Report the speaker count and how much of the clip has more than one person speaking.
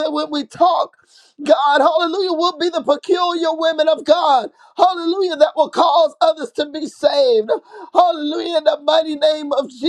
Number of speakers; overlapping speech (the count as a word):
one, no overlap